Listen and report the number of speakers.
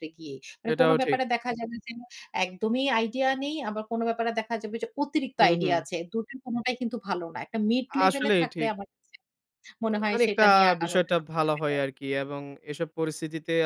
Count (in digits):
2